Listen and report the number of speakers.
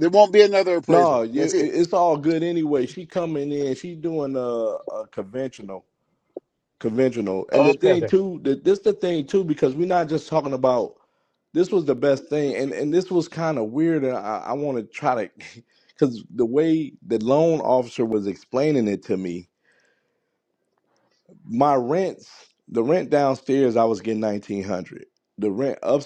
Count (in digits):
2